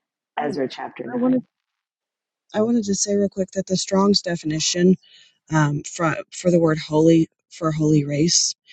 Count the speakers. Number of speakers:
2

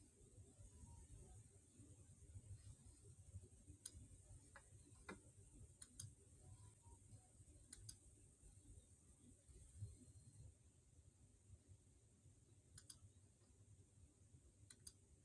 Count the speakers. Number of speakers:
0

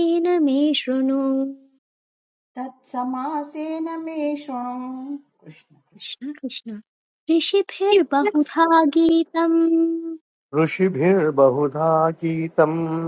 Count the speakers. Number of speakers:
3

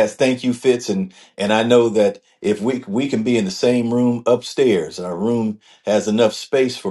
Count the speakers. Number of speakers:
1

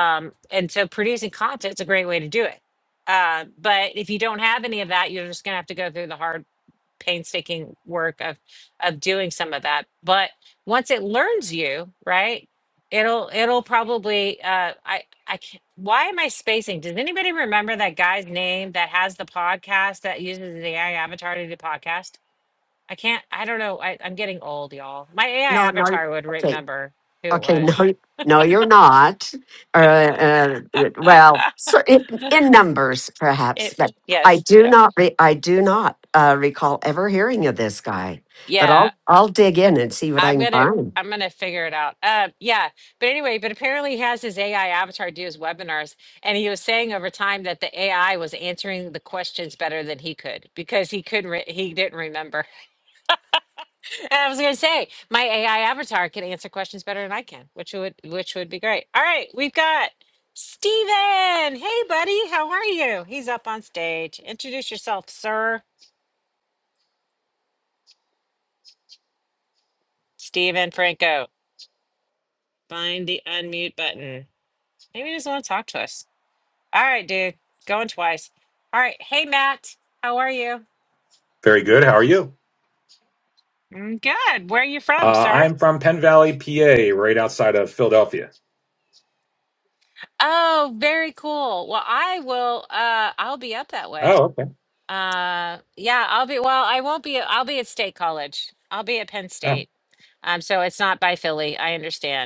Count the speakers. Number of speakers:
3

